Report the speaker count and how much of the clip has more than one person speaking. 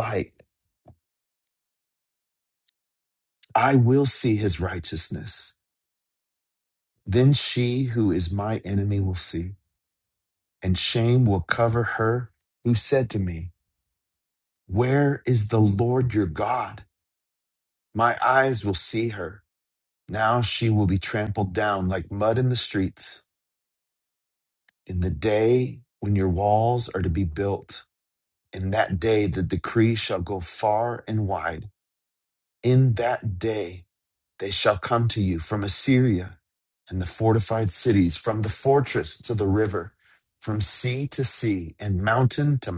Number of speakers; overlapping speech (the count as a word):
one, no overlap